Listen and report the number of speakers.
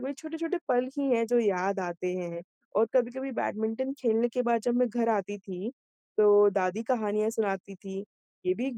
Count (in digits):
1